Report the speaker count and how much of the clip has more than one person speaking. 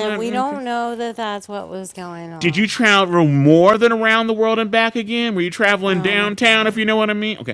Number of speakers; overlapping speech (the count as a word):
two, about 21%